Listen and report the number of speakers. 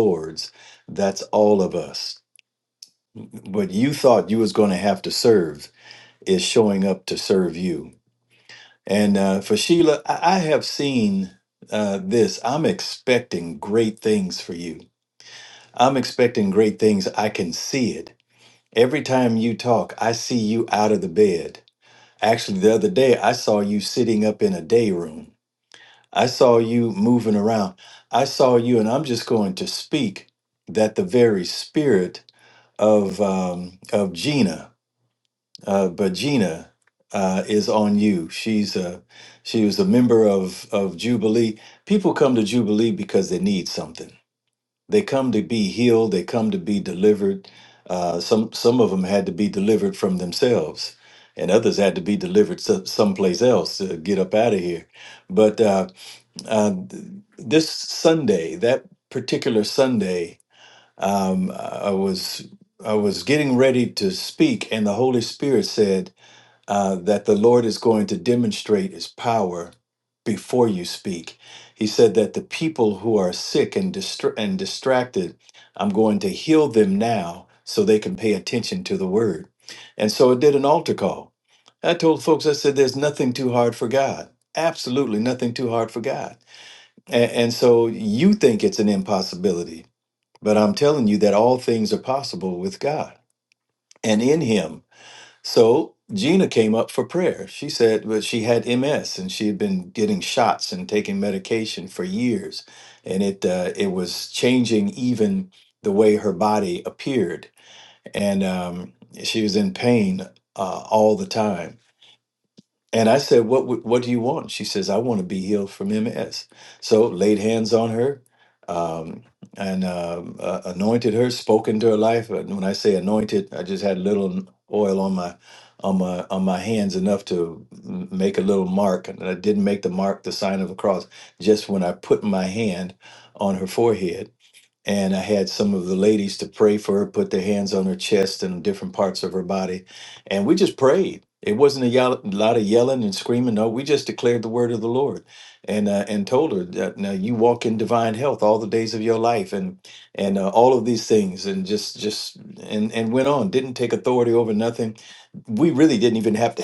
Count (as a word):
one